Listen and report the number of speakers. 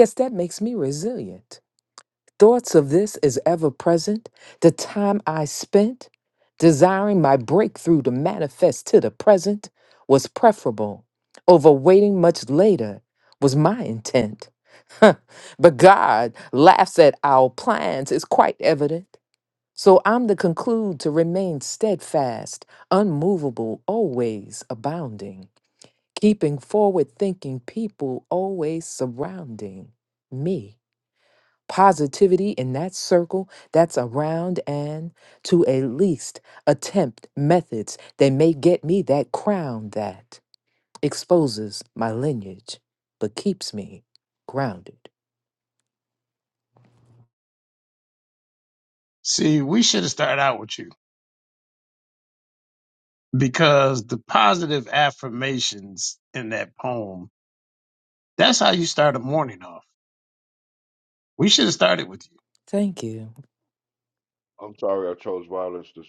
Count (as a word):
three